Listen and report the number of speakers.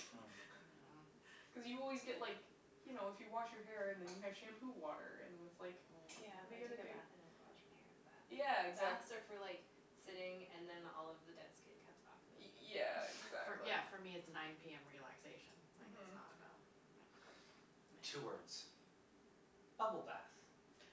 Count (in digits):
4